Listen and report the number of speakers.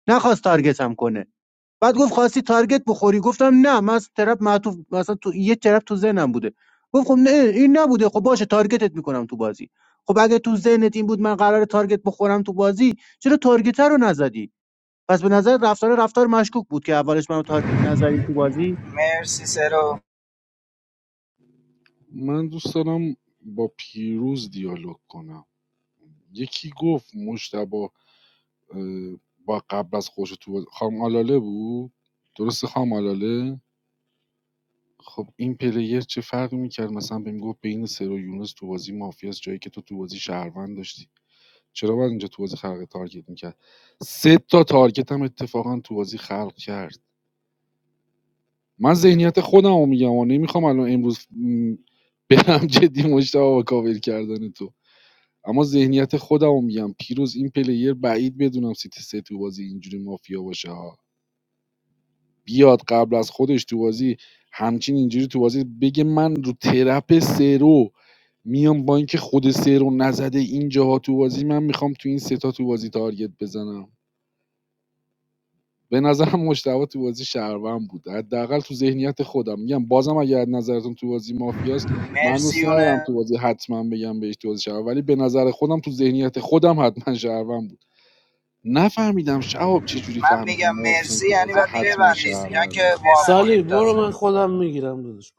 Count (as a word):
four